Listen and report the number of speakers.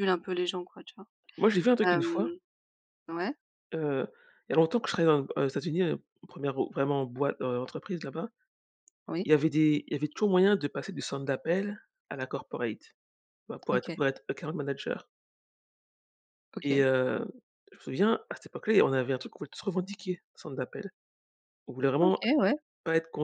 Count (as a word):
two